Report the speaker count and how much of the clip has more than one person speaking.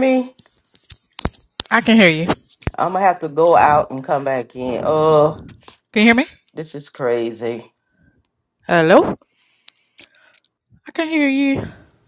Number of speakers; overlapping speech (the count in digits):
2, no overlap